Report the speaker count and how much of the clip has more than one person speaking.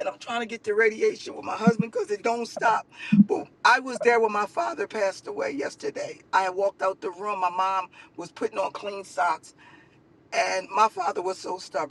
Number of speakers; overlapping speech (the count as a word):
one, no overlap